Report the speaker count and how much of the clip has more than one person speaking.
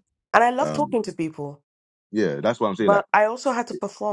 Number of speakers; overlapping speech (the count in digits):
2, about 13%